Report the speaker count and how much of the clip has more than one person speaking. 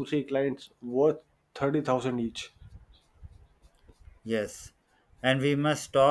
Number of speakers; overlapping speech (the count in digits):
2, no overlap